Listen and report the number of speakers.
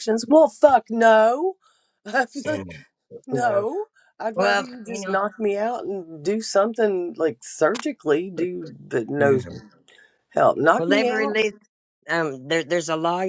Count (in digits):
2